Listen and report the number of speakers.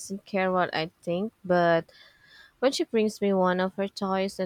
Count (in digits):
1